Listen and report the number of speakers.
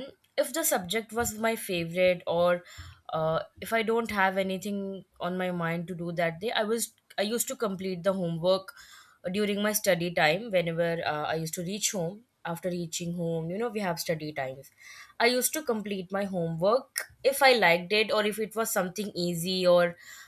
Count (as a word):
one